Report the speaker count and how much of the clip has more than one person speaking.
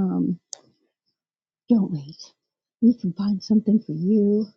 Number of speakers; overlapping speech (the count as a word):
one, no overlap